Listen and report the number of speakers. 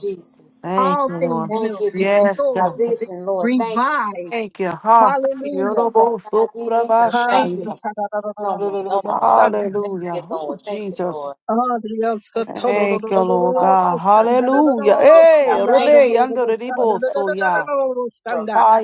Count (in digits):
3